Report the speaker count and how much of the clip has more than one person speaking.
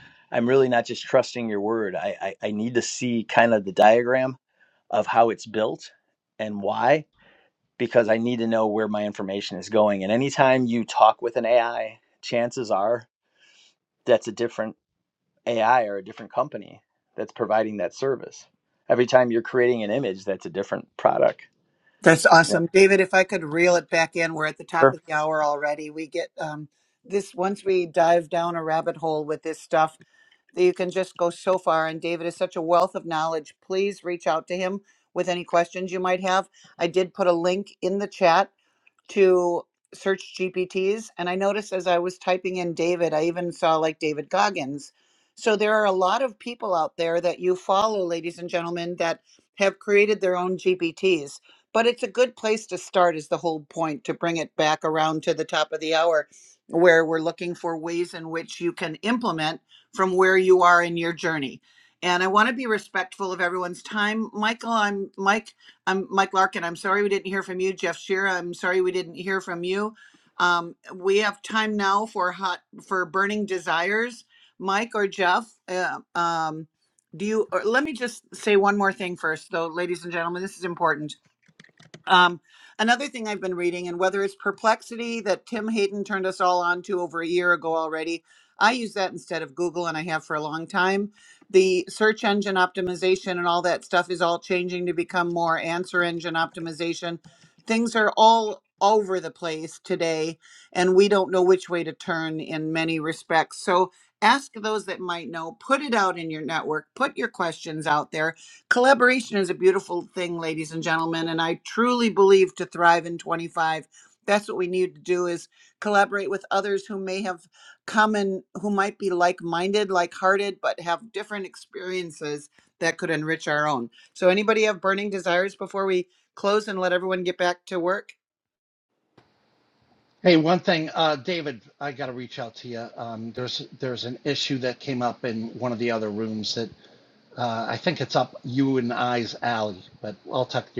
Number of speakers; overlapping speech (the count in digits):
3, under 1%